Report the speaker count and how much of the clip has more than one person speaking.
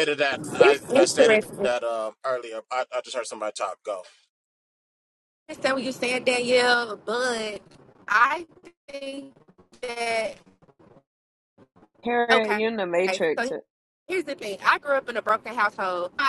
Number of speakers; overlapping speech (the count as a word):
three, about 10%